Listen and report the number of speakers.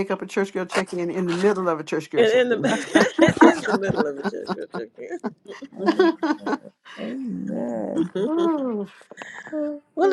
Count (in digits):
3